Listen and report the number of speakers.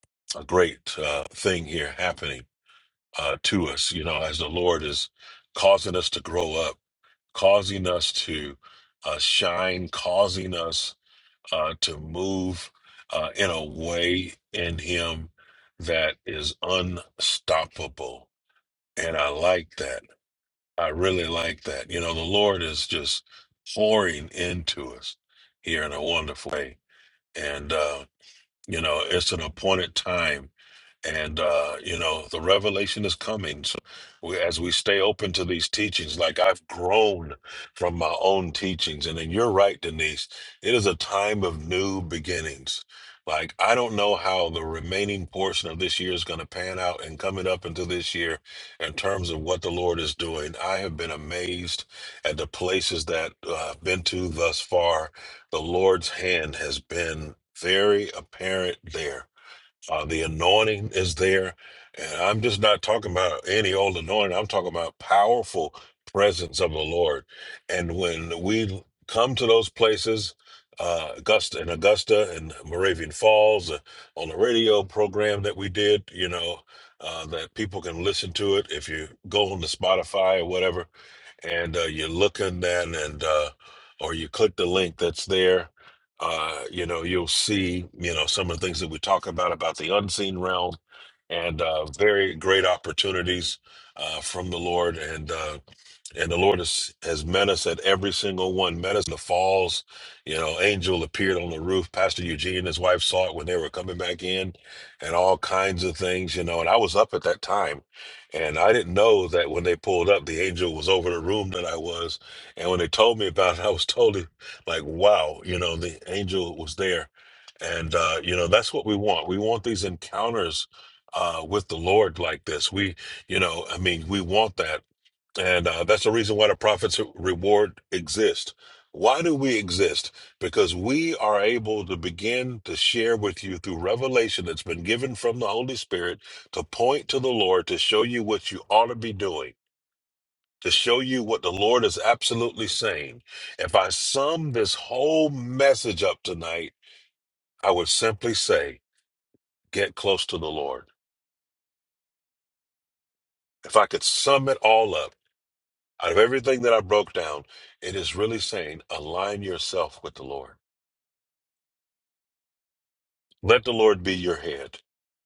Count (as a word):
one